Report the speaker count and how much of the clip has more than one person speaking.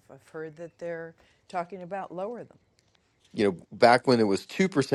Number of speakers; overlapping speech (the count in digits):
2, no overlap